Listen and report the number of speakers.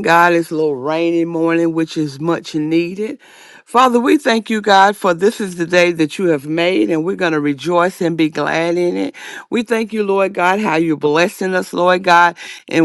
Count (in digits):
1